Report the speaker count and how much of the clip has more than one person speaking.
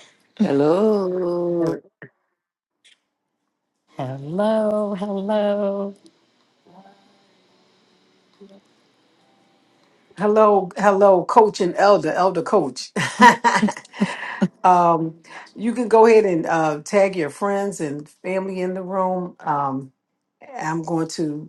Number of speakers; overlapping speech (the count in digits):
3, no overlap